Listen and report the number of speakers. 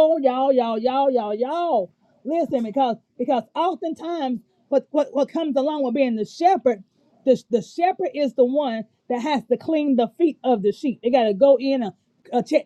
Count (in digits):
1